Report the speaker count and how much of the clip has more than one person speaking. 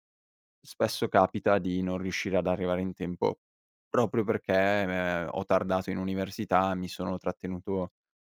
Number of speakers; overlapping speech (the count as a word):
one, no overlap